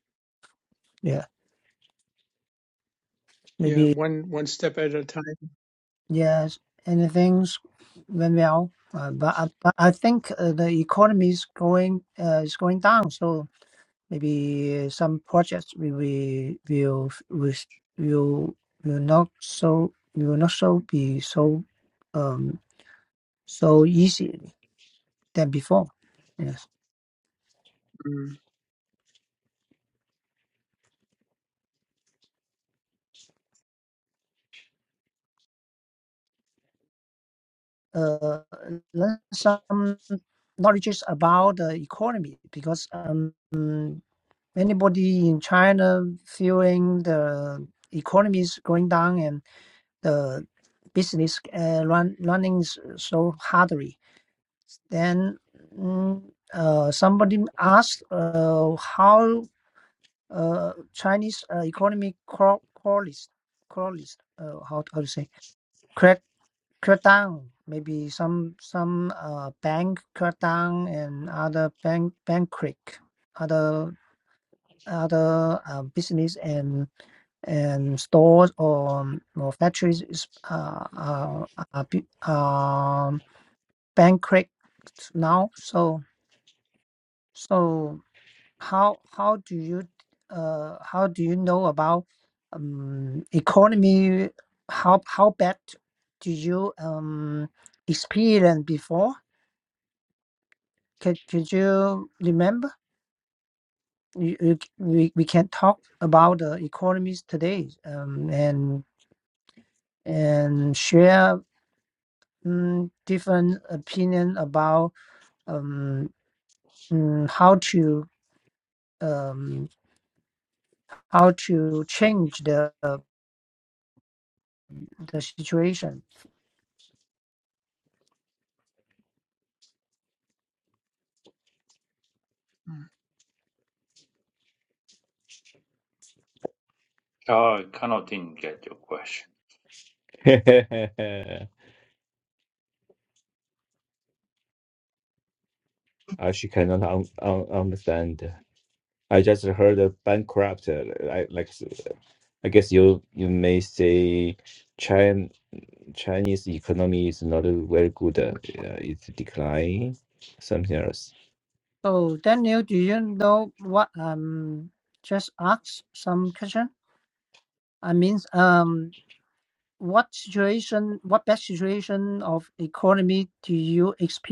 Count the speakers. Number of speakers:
4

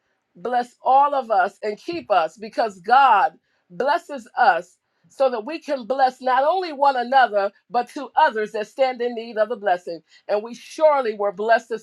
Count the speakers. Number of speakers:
1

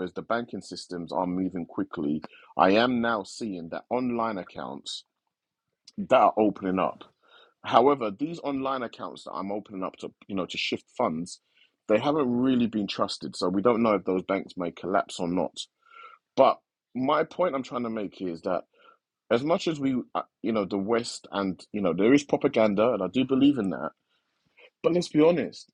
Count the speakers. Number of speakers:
1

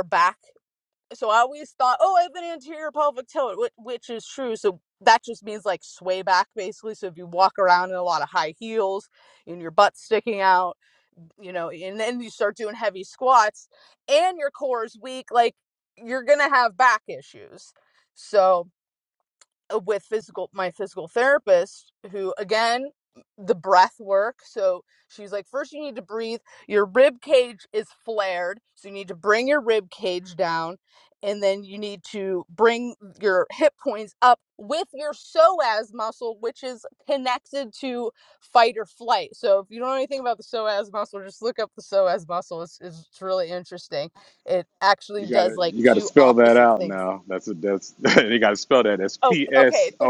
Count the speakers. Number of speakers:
2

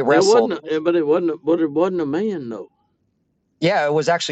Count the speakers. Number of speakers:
2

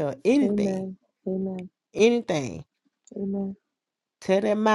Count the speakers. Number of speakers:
2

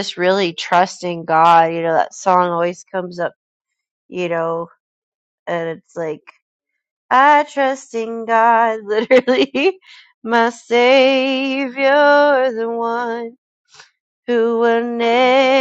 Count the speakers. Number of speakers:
1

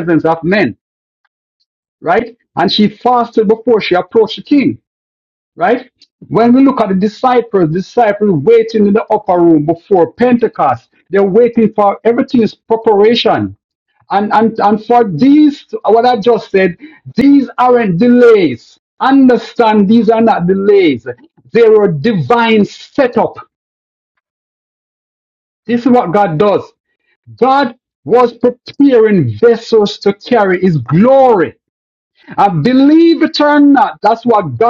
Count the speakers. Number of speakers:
1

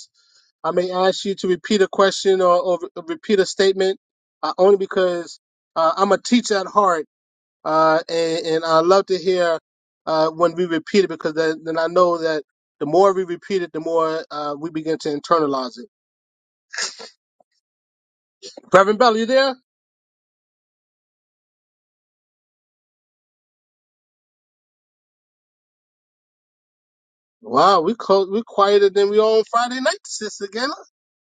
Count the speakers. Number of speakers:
1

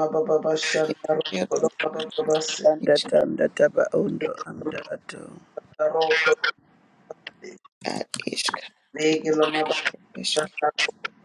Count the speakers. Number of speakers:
3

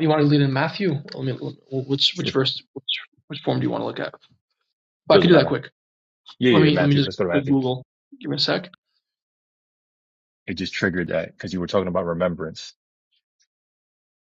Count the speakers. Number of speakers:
2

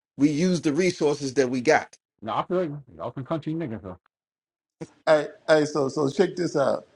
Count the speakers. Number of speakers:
3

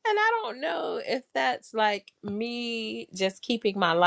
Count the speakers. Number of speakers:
1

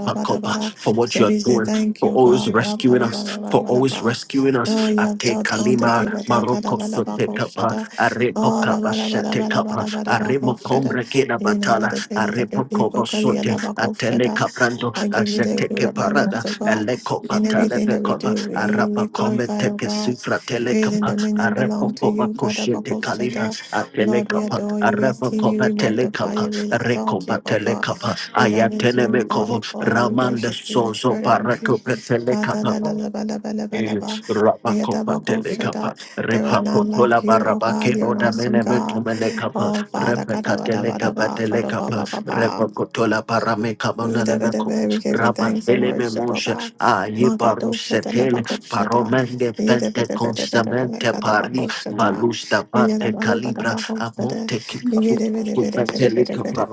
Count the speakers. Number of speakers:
2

